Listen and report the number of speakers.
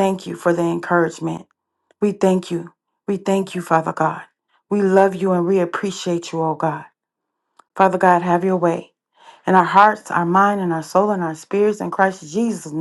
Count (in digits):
1